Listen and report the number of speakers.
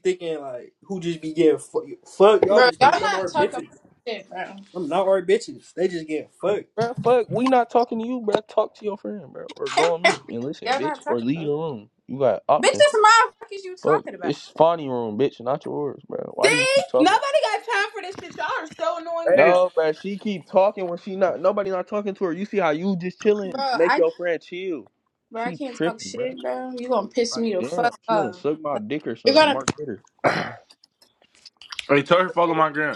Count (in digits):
5